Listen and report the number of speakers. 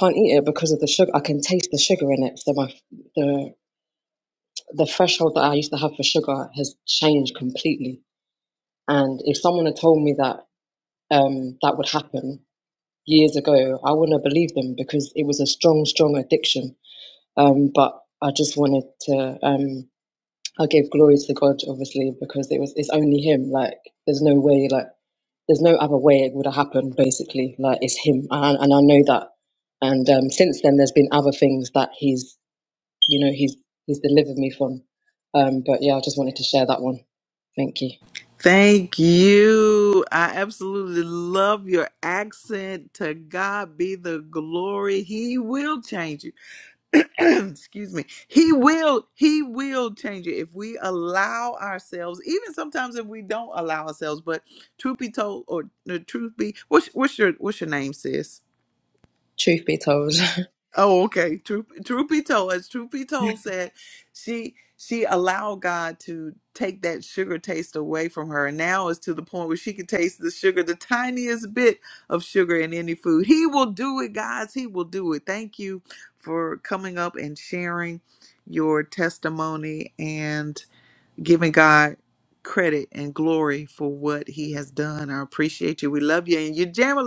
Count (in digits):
2